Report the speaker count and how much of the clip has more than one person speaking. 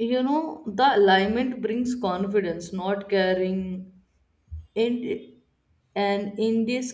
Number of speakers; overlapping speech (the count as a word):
one, no overlap